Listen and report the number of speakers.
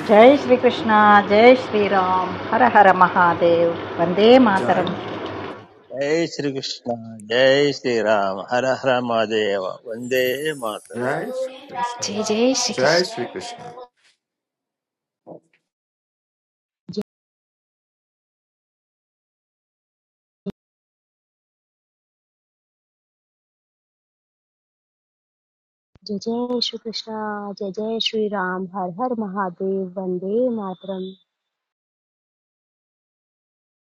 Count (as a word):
five